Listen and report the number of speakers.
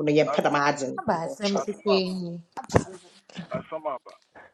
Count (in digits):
3